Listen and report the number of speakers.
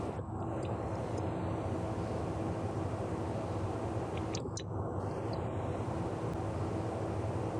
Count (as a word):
zero